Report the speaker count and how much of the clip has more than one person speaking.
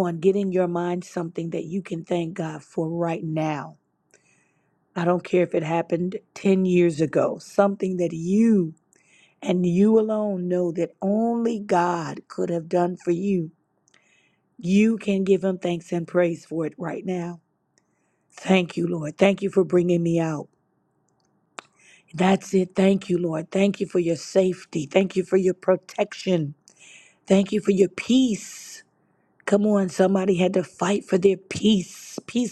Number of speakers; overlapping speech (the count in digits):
1, no overlap